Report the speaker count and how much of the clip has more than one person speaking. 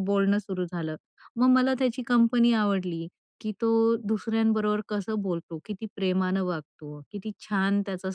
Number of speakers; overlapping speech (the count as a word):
one, no overlap